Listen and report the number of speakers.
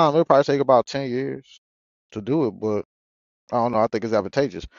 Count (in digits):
1